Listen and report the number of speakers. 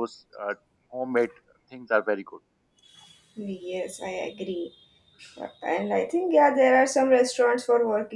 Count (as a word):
two